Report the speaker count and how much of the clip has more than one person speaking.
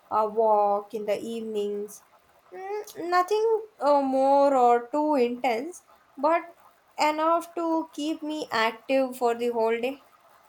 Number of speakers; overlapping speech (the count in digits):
1, no overlap